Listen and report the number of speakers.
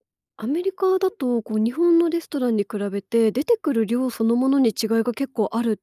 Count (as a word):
one